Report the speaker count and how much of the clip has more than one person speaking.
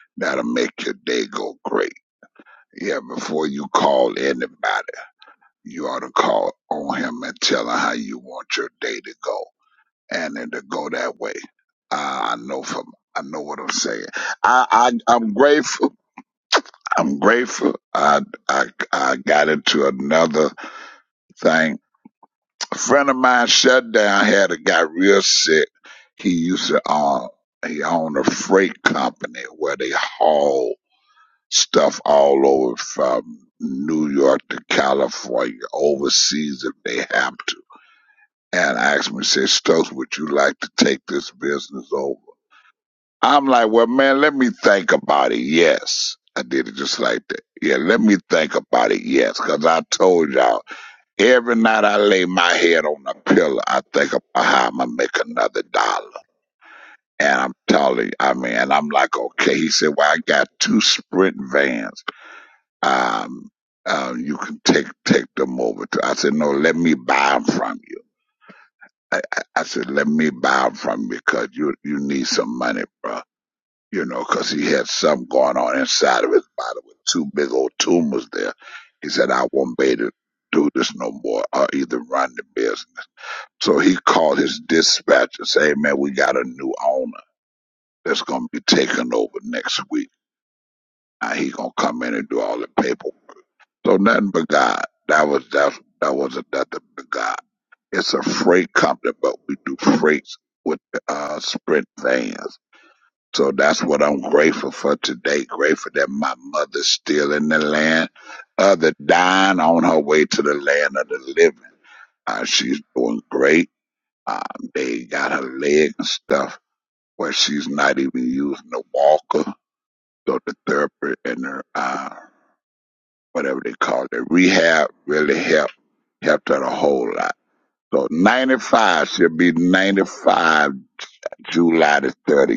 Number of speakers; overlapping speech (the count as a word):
one, no overlap